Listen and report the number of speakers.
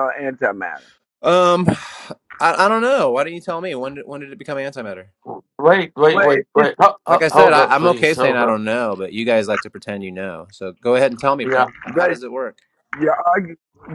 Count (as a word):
three